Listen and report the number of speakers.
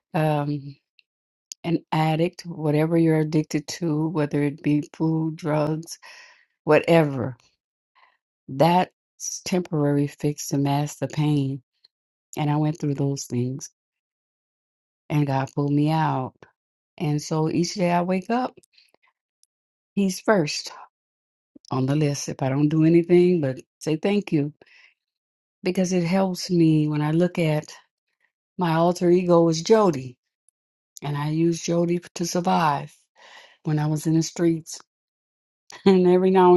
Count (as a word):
one